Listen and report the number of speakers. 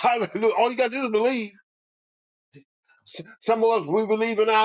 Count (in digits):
1